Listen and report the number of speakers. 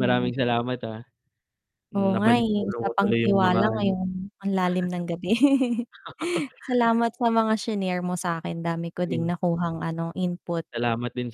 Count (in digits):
2